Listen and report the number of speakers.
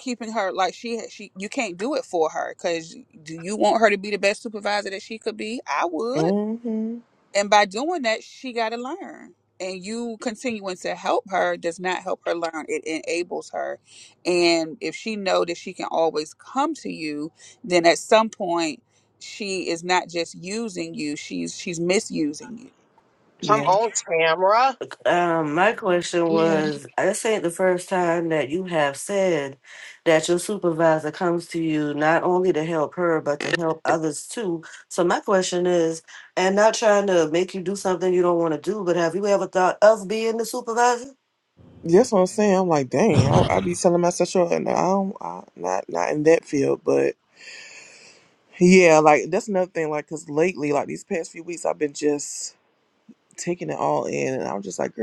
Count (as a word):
four